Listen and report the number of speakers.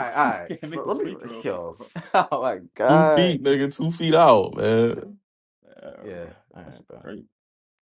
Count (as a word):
three